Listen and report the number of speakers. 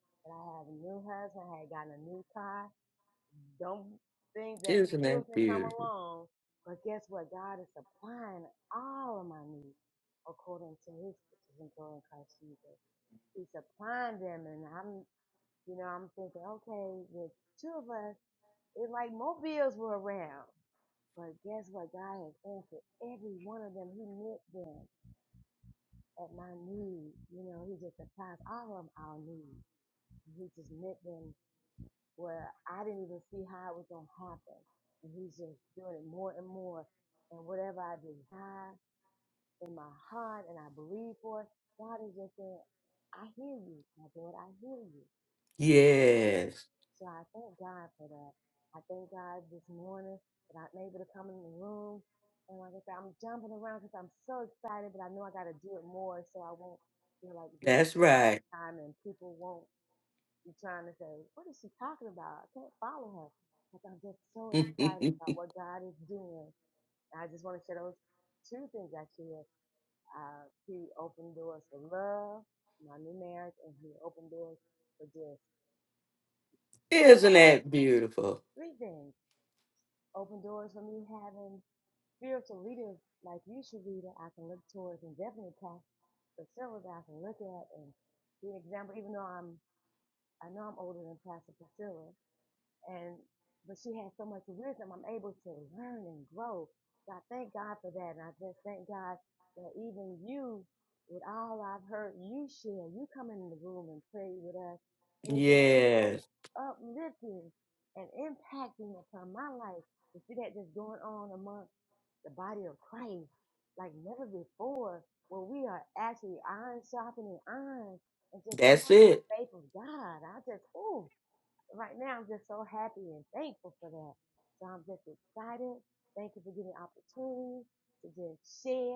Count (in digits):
2